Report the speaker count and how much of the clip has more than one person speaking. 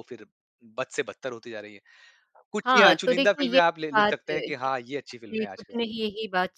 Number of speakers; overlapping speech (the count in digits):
2, about 34%